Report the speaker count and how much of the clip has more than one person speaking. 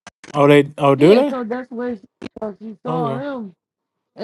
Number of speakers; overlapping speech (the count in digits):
2, about 16%